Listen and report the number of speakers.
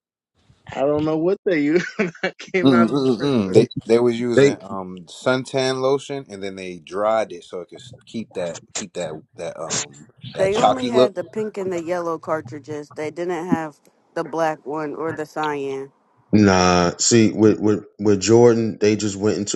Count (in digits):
4